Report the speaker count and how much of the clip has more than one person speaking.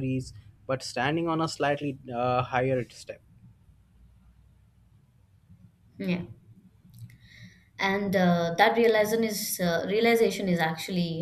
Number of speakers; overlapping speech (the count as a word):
two, no overlap